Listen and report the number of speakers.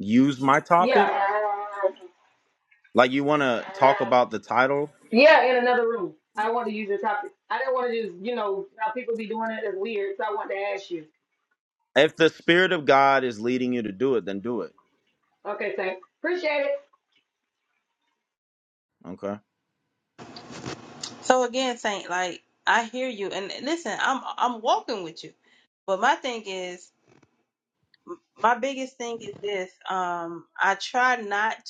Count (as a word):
three